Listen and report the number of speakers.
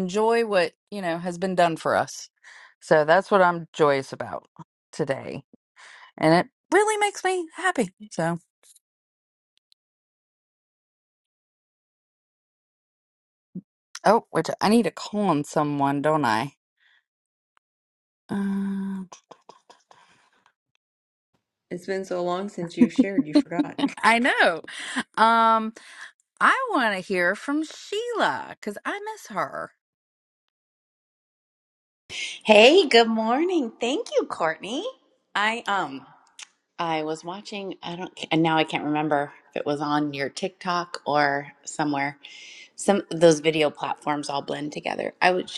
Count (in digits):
3